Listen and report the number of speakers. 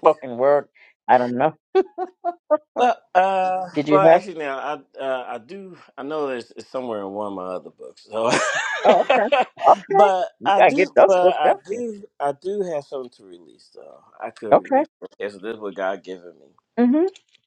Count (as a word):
two